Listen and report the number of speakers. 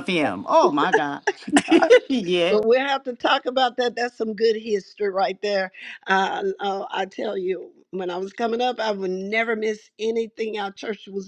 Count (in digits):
2